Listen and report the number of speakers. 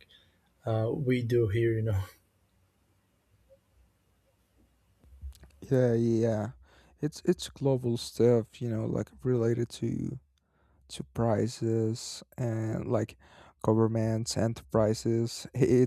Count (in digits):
2